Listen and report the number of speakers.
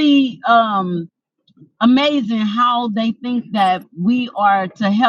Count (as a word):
one